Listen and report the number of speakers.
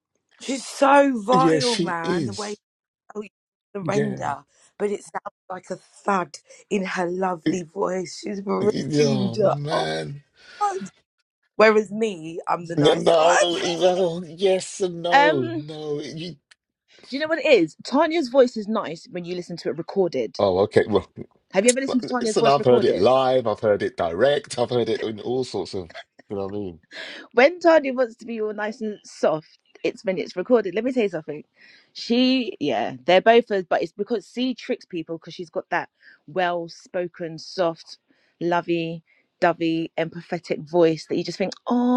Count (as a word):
three